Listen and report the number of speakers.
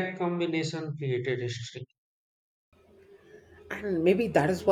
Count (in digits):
2